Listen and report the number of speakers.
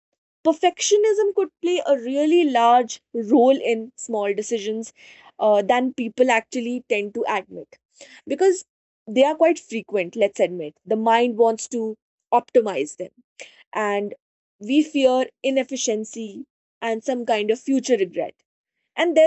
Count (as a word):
one